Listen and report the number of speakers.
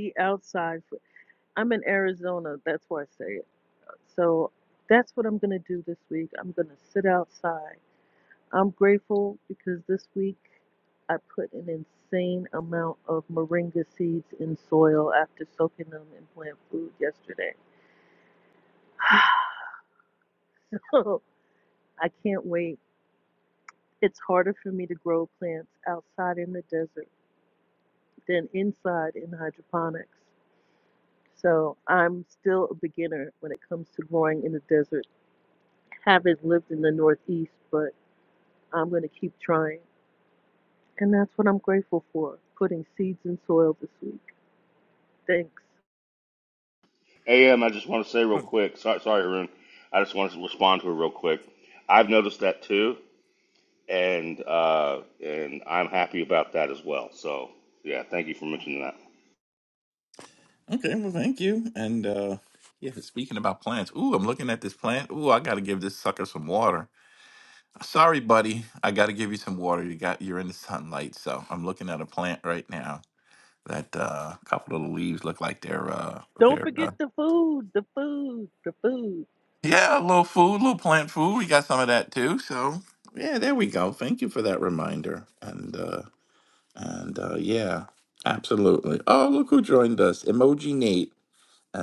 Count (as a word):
three